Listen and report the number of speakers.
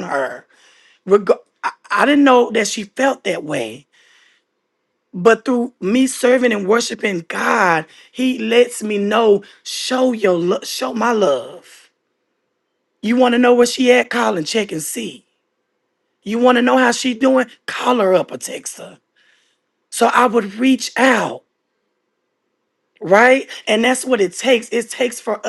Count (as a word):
one